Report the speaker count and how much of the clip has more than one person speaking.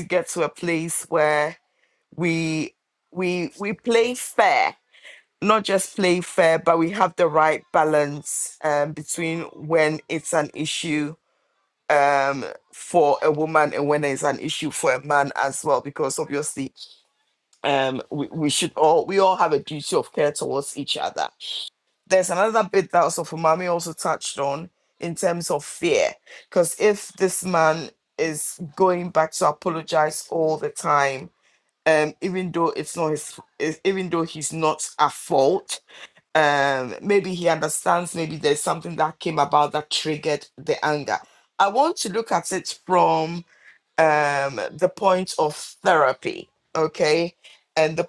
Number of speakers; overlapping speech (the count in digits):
1, no overlap